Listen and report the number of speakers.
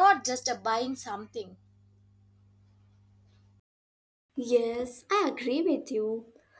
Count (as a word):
two